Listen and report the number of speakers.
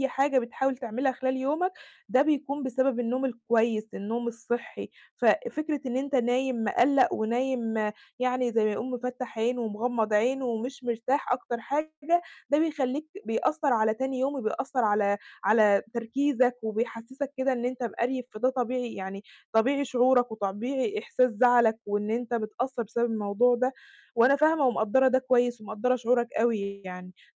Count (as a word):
one